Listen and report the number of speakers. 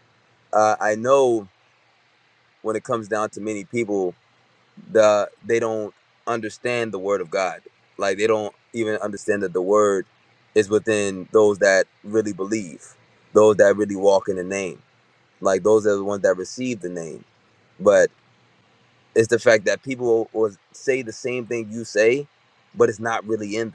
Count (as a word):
one